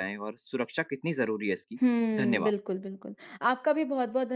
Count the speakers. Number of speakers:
two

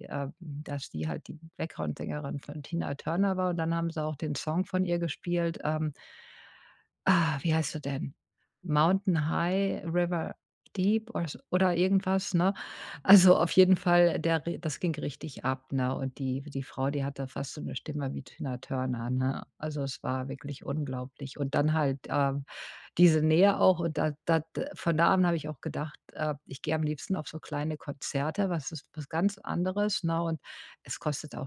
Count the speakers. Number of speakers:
one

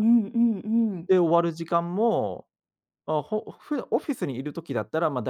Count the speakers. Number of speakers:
two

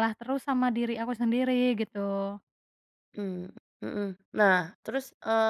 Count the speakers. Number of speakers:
two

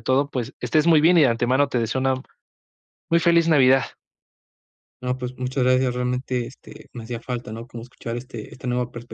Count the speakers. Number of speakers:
two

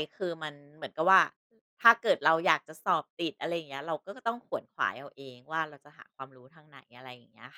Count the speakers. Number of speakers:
one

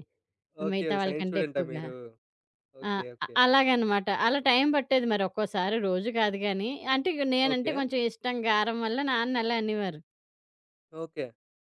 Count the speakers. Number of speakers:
two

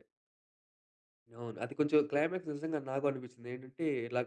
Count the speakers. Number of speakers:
one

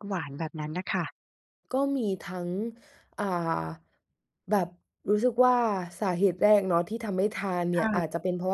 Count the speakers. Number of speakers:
two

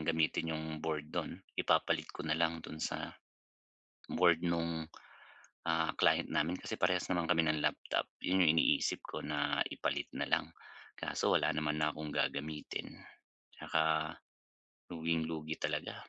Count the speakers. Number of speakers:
one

